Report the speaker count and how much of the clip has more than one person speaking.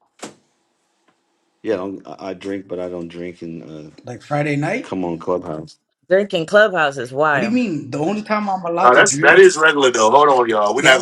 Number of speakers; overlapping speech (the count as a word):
four, about 11%